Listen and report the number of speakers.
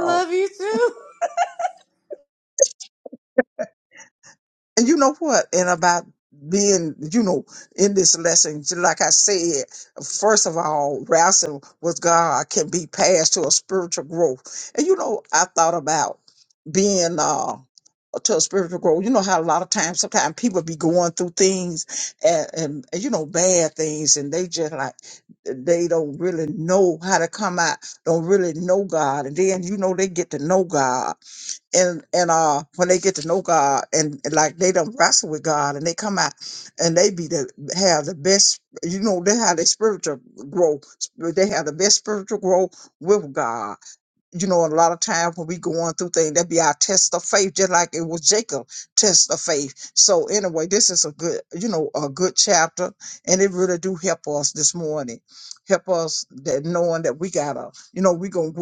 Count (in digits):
2